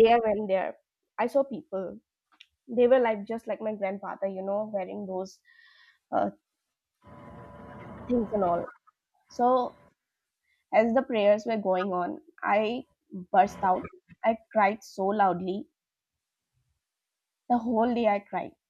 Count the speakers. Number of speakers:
1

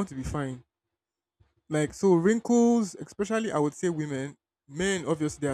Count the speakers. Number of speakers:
1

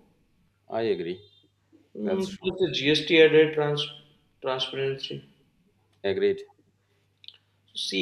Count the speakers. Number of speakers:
2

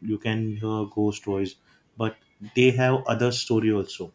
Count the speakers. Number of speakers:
1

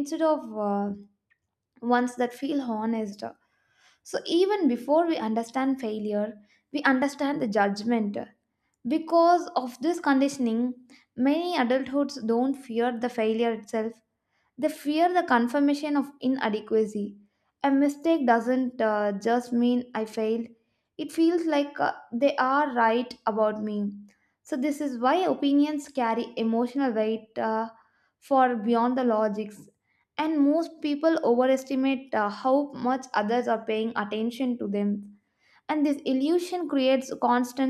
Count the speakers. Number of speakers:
1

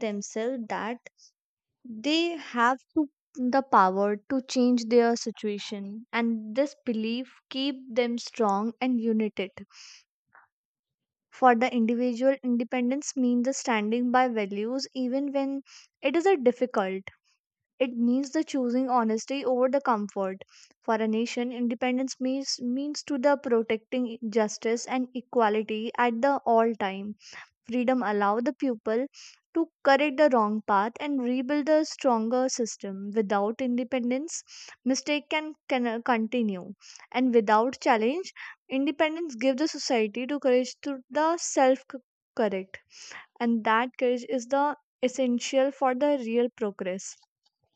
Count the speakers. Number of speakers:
1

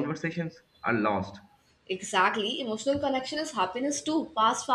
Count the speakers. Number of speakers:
2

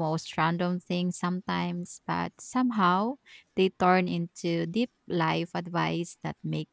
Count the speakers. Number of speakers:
1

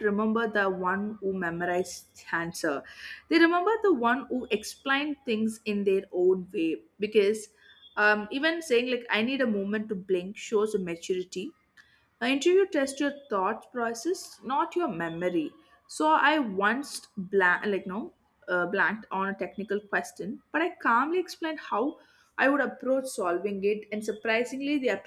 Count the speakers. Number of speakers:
1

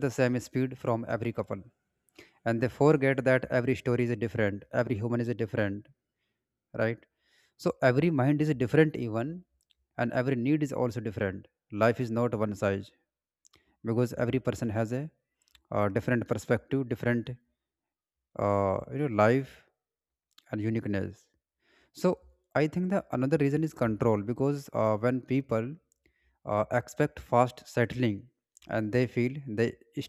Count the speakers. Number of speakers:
1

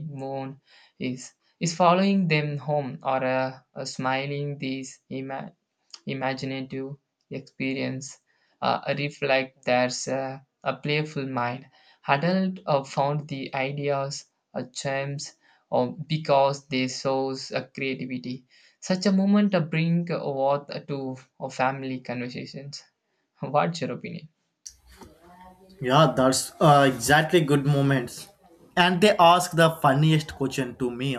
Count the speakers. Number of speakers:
2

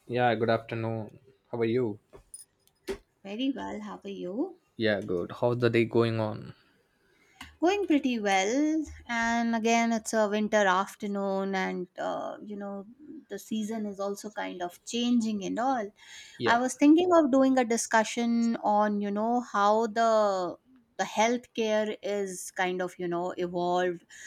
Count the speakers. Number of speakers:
2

